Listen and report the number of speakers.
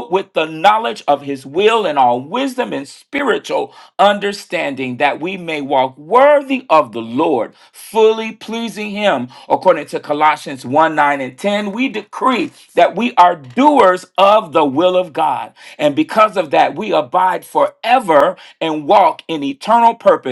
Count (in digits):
1